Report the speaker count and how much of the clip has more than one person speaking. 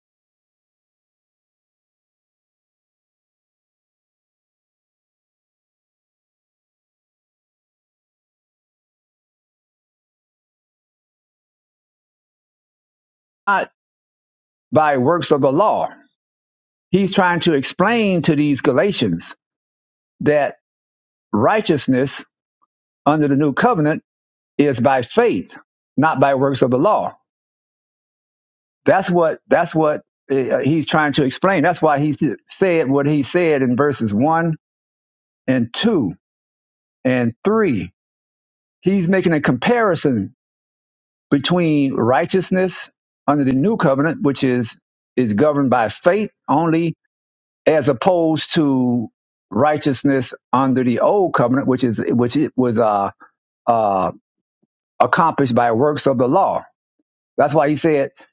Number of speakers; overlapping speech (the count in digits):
1, no overlap